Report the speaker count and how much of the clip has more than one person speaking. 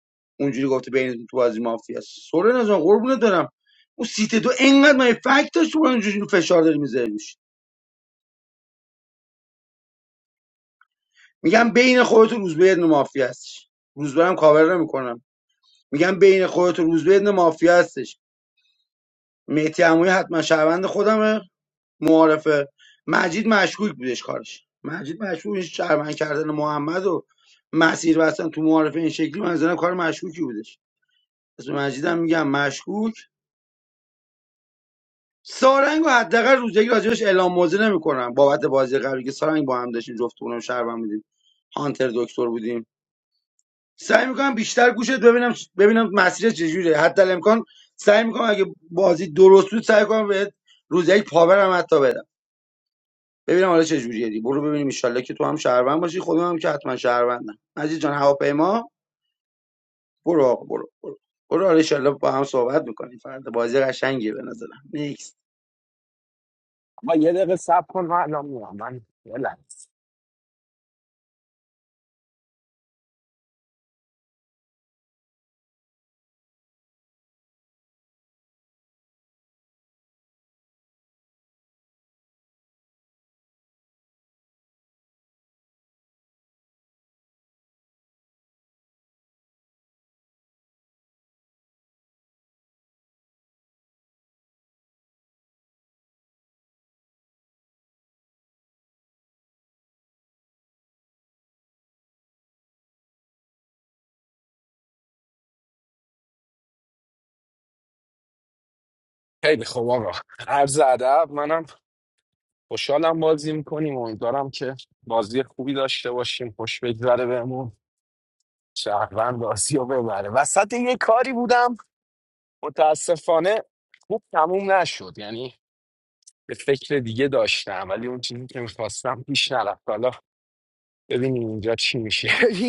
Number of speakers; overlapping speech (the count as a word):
two, no overlap